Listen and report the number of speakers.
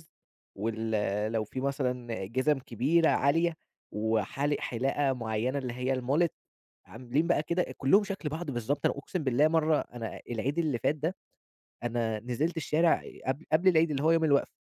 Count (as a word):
one